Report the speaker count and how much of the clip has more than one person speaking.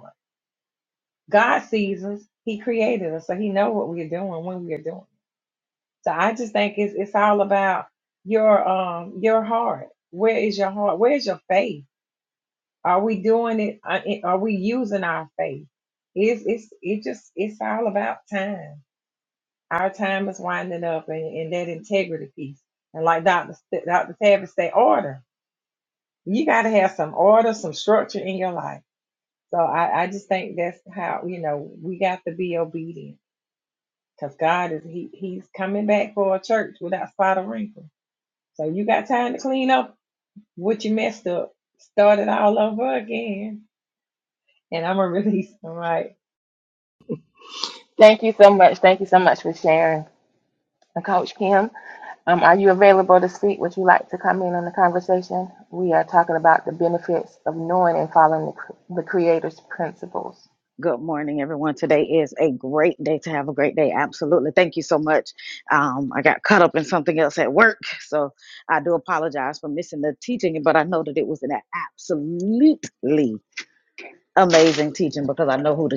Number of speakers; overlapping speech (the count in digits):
3, no overlap